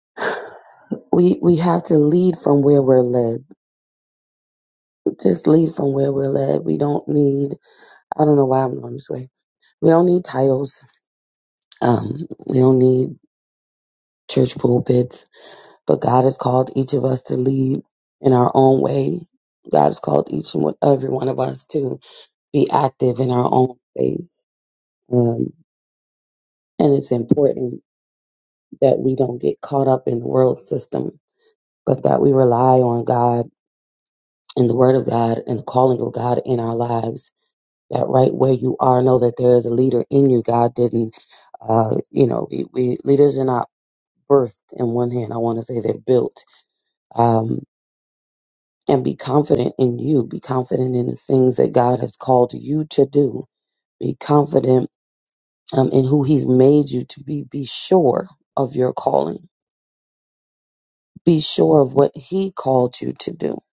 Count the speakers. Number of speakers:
1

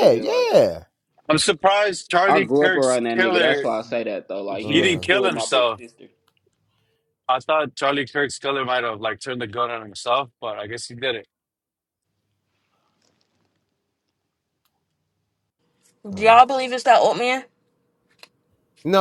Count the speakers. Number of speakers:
4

